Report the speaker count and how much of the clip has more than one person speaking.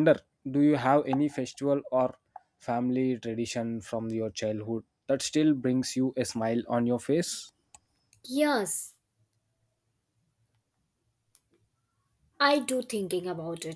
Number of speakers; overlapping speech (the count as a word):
two, no overlap